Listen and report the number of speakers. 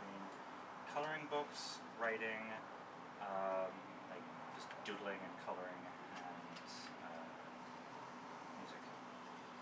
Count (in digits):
1